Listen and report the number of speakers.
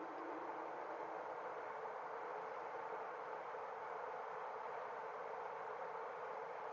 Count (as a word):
zero